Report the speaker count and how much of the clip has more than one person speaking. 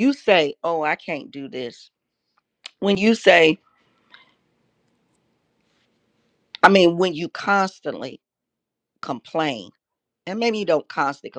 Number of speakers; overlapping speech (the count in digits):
1, no overlap